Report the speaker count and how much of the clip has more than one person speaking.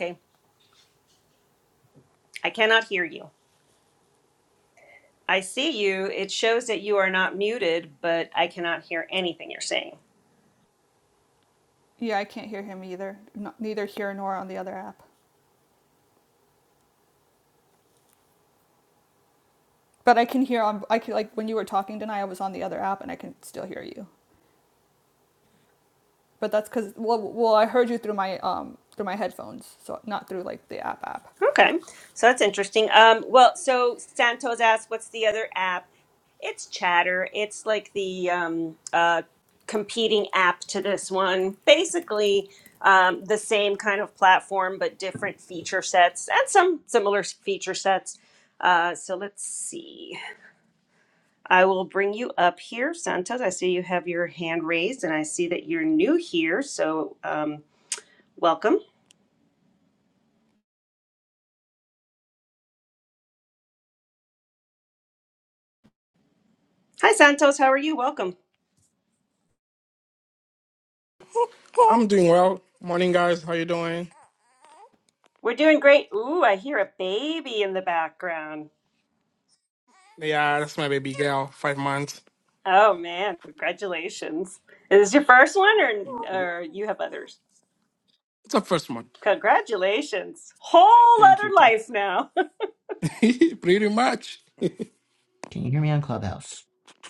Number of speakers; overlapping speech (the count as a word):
four, about 1%